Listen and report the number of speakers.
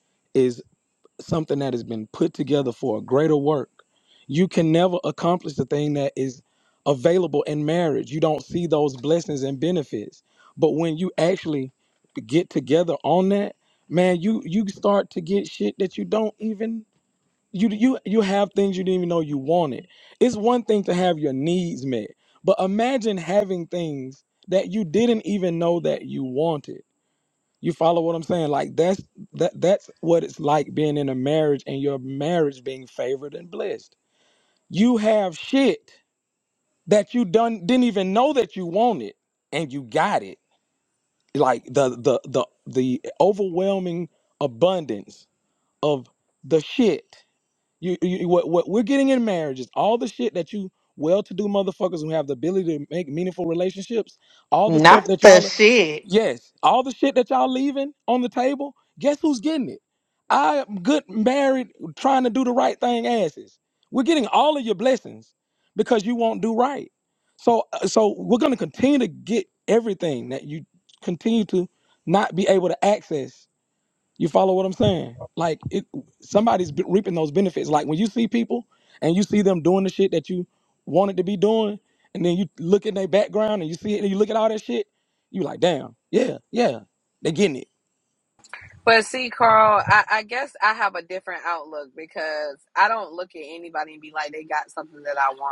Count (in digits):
3